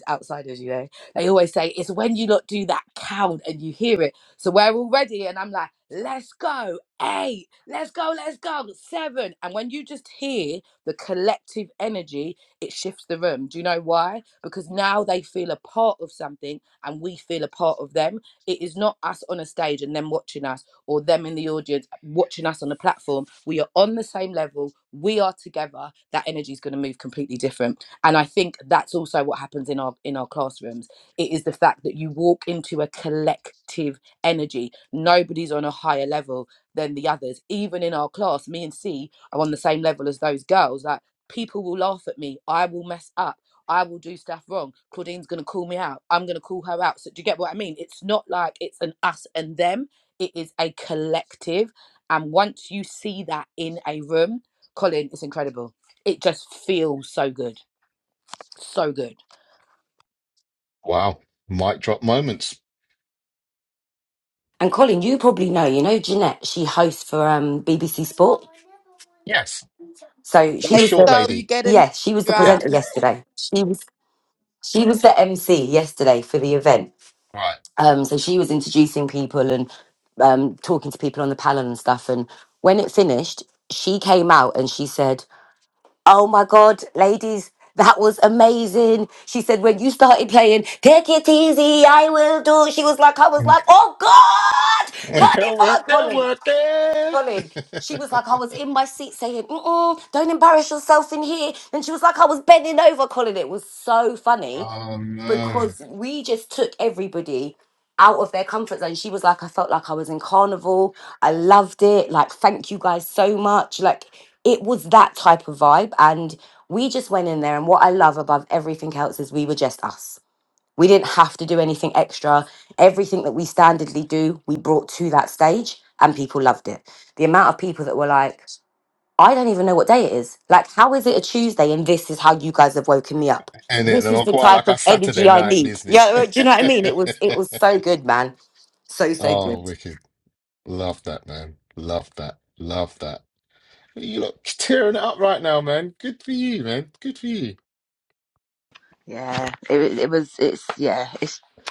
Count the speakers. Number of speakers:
4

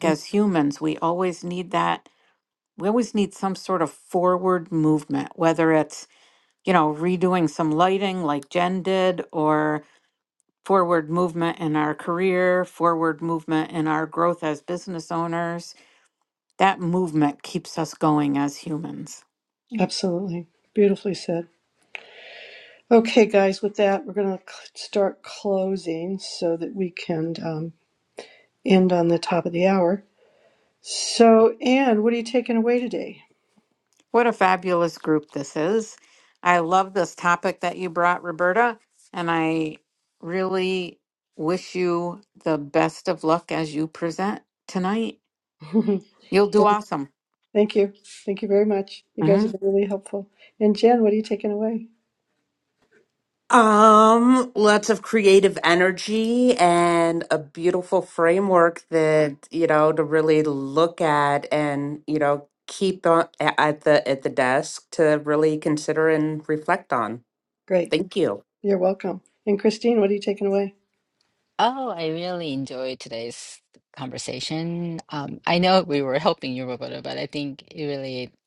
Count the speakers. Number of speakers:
4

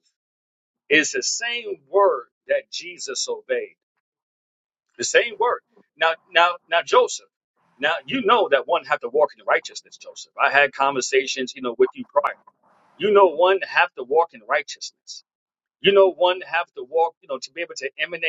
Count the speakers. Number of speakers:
1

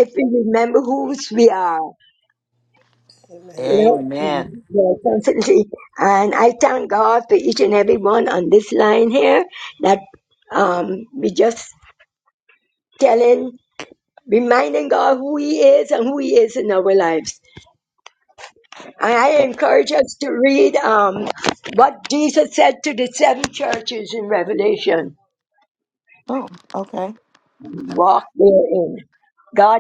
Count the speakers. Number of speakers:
2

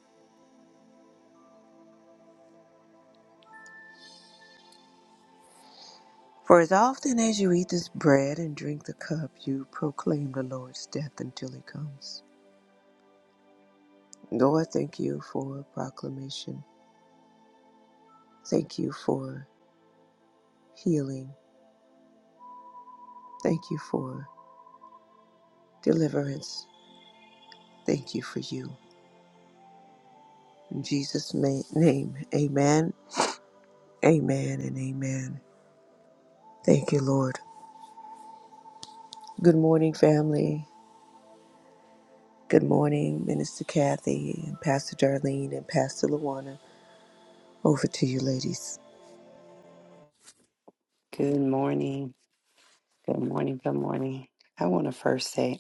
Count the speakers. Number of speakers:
2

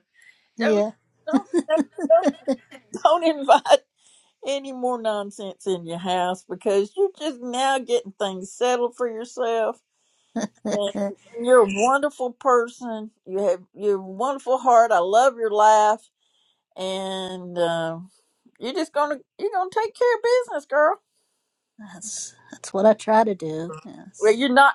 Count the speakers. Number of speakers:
2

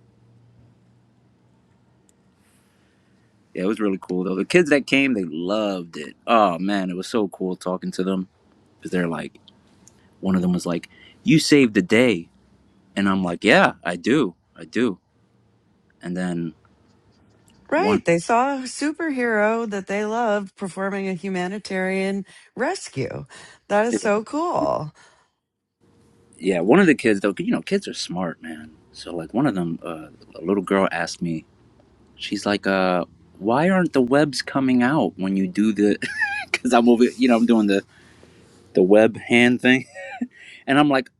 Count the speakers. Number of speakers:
2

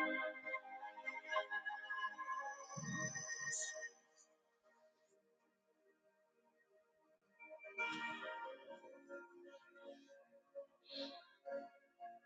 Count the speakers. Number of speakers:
0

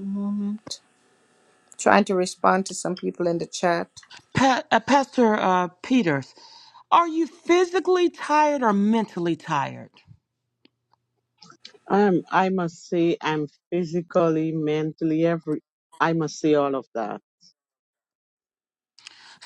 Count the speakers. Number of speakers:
3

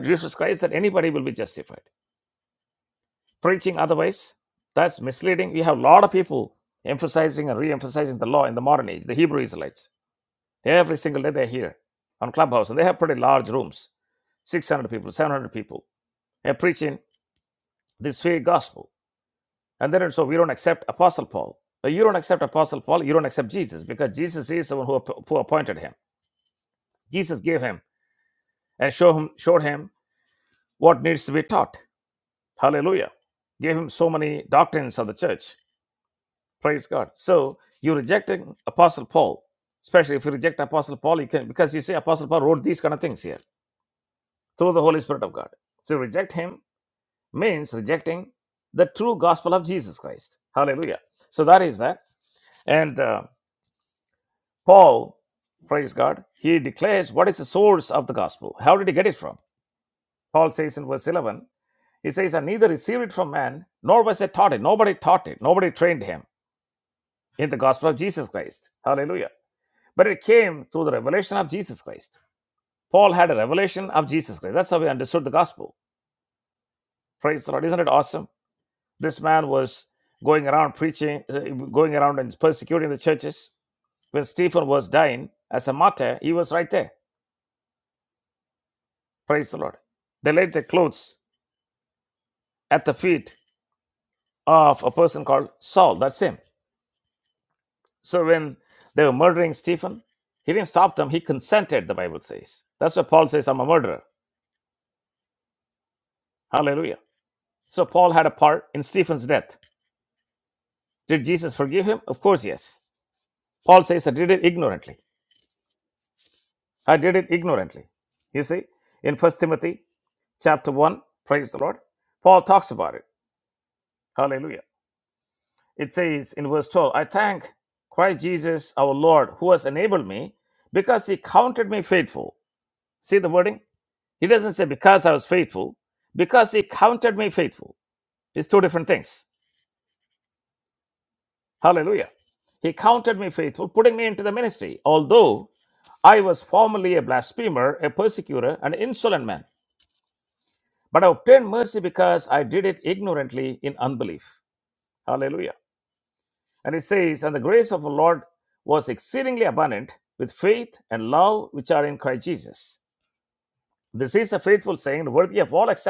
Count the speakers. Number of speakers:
1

